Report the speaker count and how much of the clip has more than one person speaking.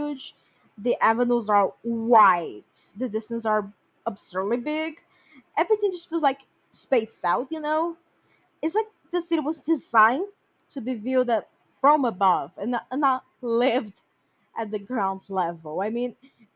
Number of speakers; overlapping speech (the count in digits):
1, no overlap